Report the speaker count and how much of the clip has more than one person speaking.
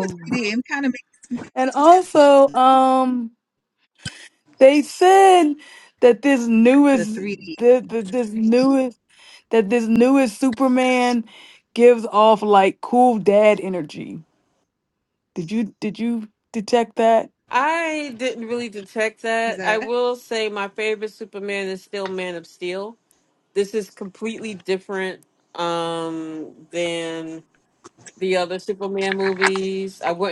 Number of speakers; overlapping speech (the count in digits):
3, about 5%